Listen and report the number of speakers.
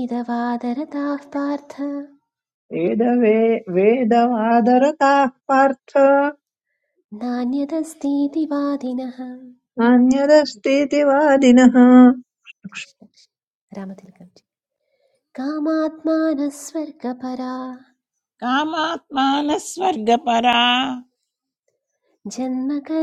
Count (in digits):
3